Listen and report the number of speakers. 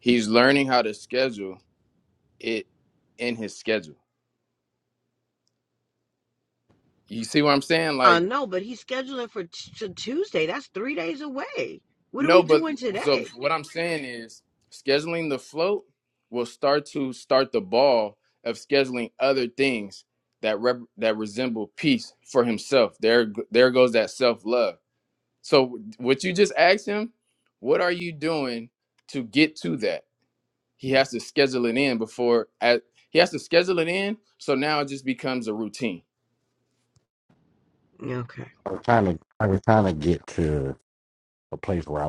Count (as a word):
three